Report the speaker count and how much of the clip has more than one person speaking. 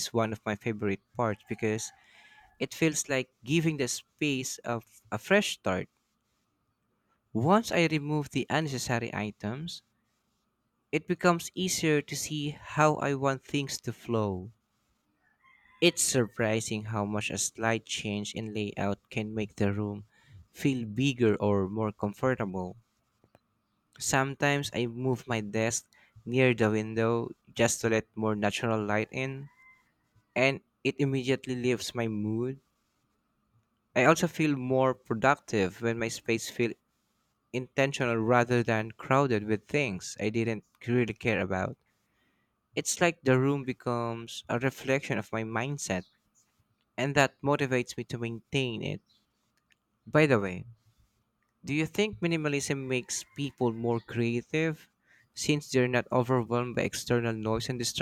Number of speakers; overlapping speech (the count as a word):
one, no overlap